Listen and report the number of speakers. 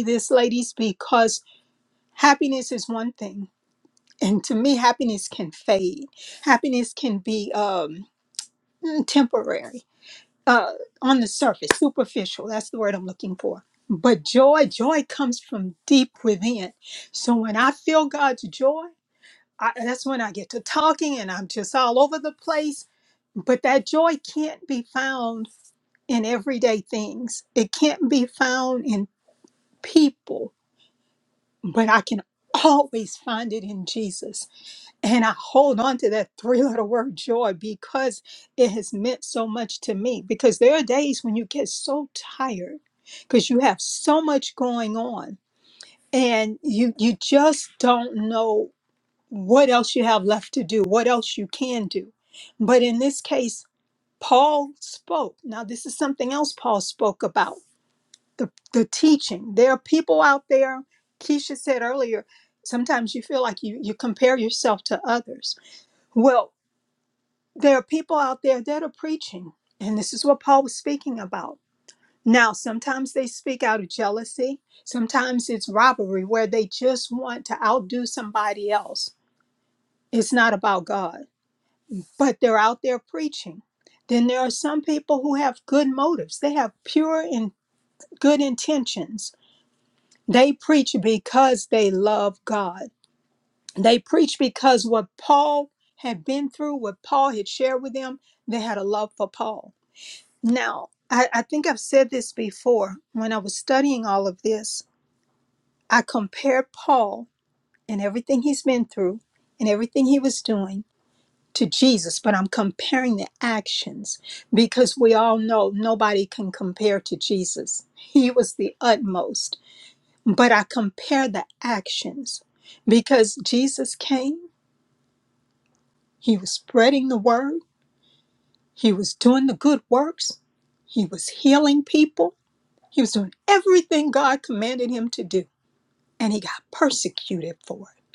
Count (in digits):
1